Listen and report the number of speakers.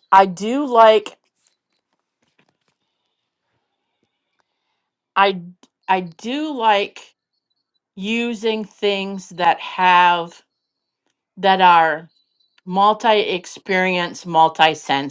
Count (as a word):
one